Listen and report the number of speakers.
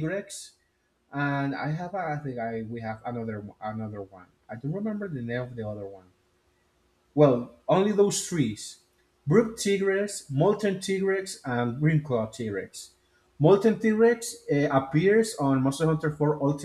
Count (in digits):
1